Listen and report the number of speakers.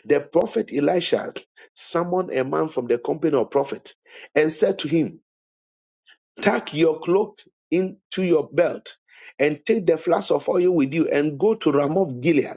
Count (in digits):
1